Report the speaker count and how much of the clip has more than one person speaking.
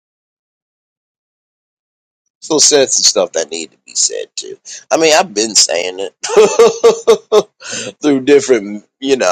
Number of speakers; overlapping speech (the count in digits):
1, no overlap